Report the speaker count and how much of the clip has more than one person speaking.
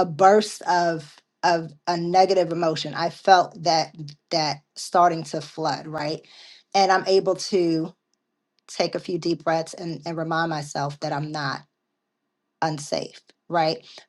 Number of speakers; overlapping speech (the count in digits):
1, no overlap